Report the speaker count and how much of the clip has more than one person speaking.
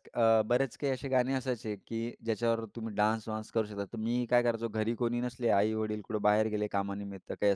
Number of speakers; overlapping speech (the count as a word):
one, no overlap